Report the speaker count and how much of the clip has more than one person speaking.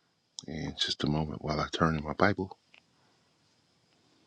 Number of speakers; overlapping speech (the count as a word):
one, no overlap